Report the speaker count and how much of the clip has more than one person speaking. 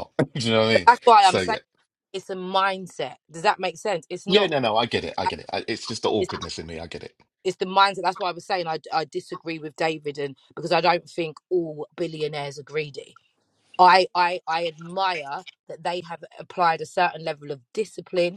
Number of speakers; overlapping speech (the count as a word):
two, about 3%